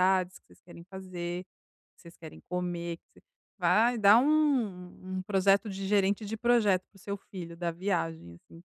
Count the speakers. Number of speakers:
1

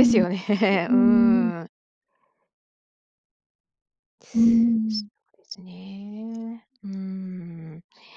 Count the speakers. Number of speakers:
2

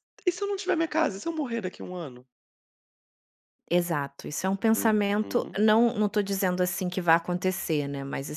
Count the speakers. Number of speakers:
2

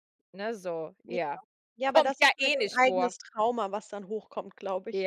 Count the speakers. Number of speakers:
2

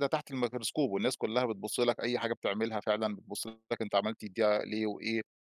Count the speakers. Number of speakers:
1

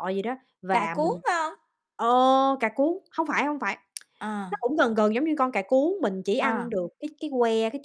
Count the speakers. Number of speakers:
2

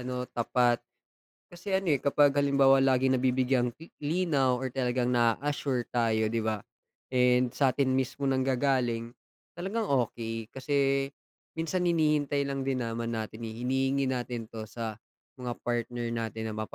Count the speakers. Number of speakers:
1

